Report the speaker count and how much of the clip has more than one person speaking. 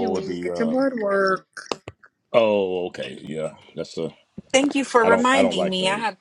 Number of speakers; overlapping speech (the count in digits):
3, about 29%